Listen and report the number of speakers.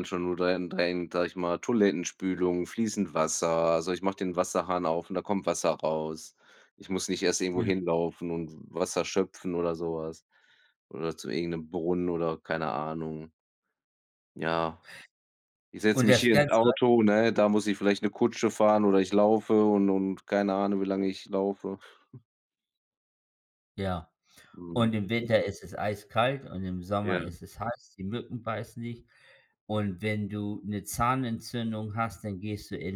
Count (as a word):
two